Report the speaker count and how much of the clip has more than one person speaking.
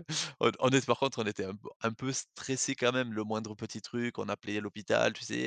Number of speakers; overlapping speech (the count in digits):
1, no overlap